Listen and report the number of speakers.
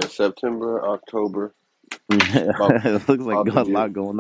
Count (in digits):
2